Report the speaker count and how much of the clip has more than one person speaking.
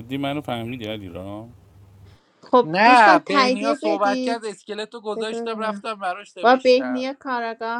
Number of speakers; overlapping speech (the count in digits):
3, about 39%